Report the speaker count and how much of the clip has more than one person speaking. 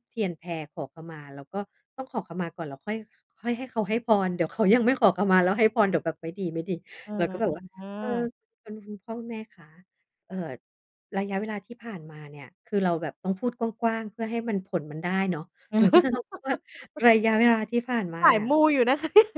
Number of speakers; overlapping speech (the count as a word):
two, about 3%